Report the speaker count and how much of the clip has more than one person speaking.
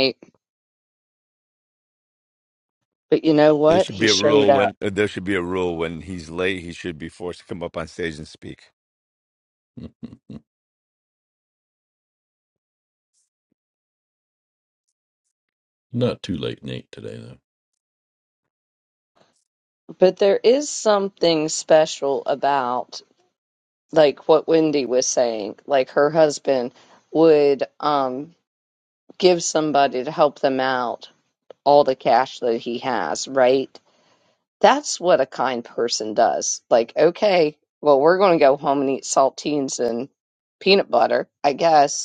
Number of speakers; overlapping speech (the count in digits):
3, about 2%